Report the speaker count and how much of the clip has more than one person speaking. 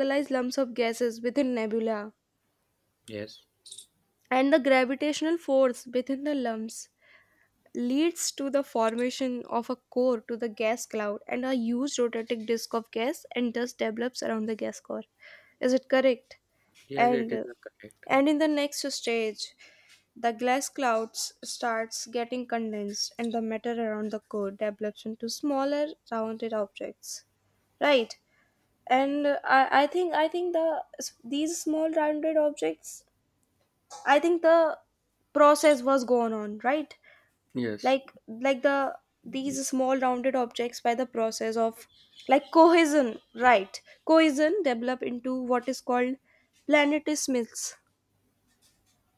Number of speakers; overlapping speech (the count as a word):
two, about 1%